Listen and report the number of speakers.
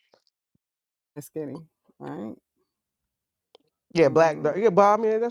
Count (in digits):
2